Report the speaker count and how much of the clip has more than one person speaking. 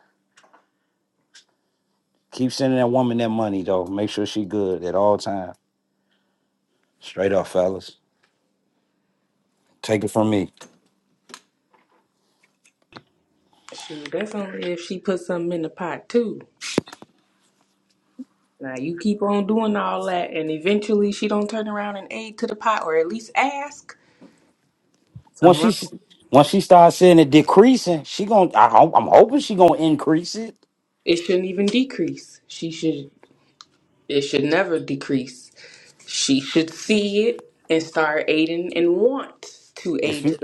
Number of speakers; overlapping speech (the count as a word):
two, about 2%